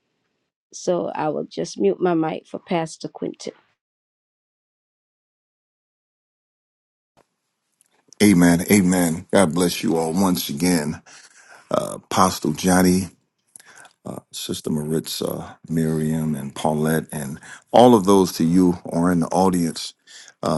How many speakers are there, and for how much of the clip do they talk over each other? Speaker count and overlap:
2, no overlap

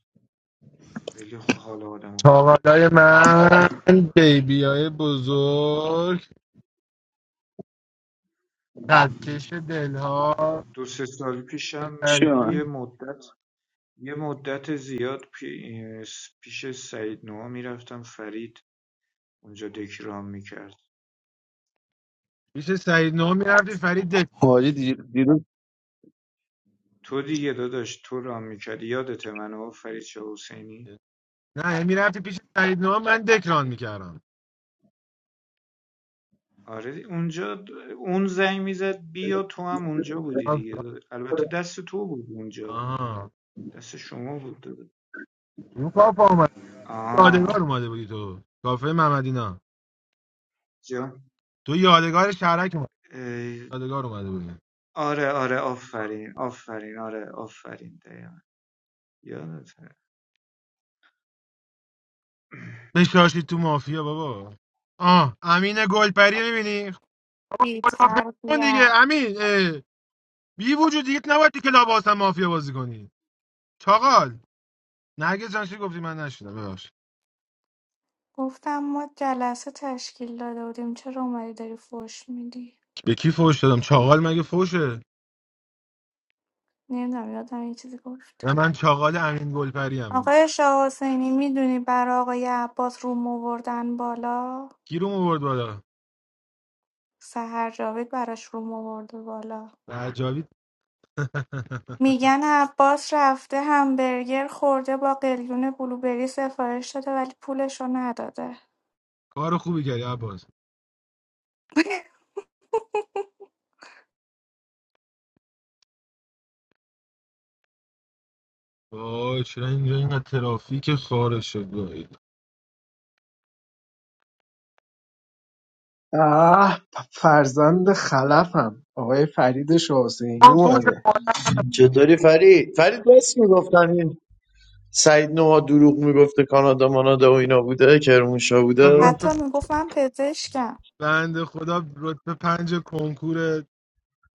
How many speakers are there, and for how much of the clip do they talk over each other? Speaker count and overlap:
6, about 2%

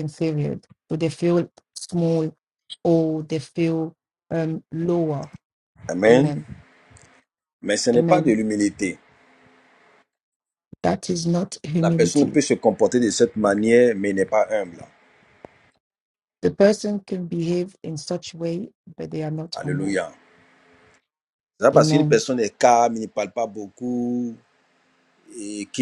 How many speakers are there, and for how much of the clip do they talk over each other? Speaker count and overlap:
2, about 8%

